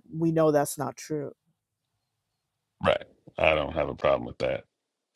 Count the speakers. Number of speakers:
2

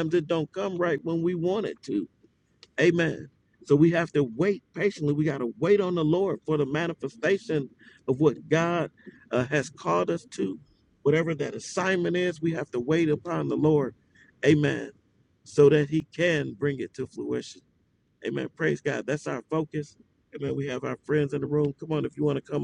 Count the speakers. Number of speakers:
1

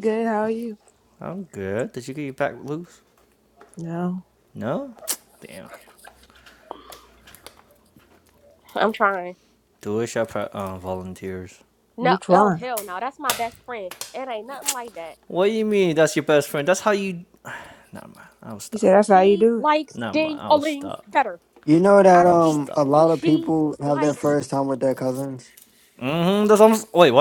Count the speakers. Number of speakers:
4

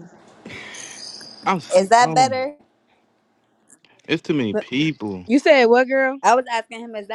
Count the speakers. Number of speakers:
3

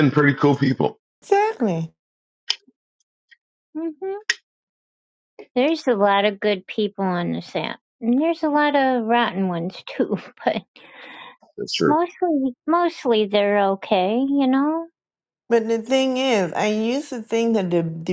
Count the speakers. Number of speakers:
3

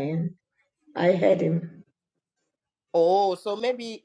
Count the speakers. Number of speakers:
2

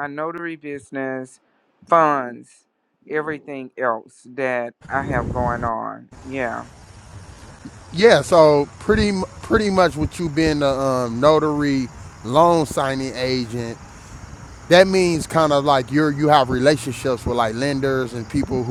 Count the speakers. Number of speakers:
2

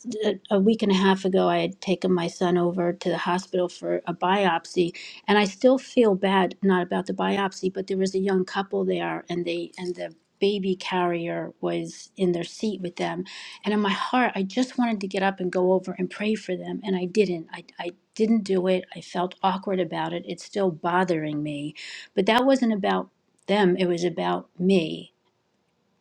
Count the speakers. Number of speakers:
1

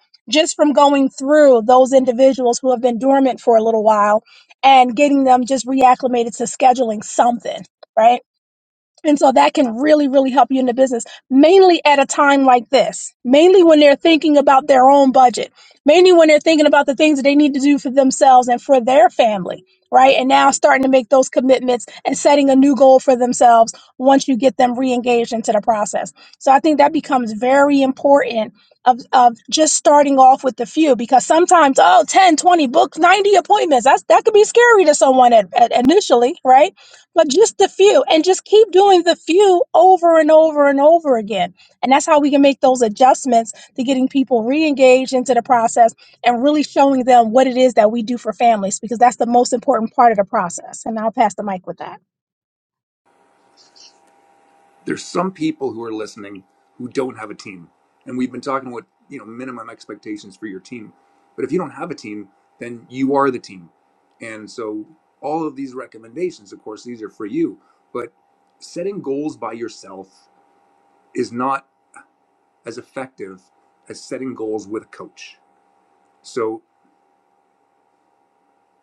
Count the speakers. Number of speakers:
2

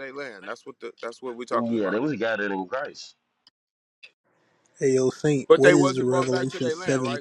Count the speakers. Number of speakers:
3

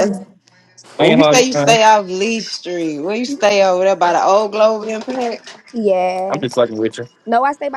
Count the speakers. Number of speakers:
3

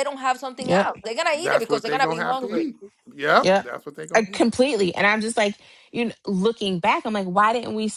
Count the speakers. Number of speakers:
3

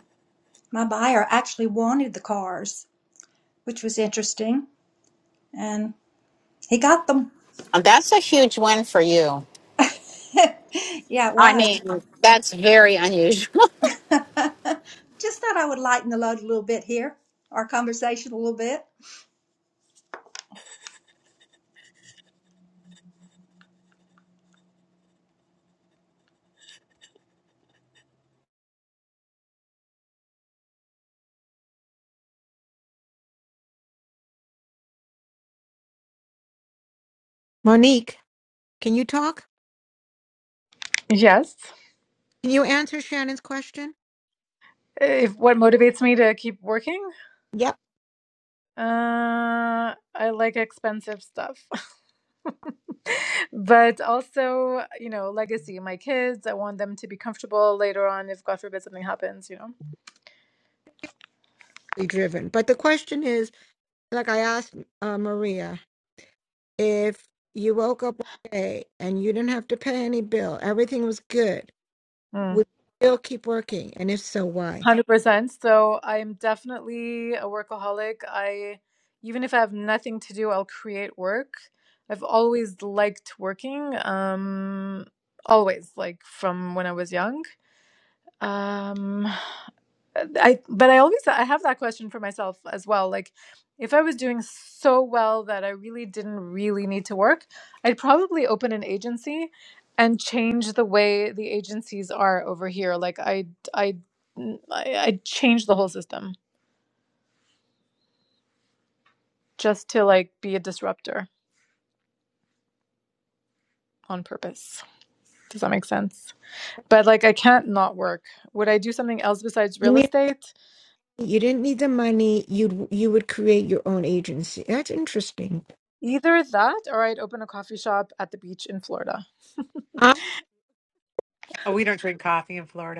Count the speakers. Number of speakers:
5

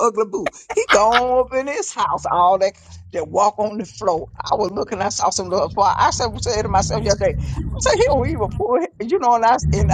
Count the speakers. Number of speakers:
1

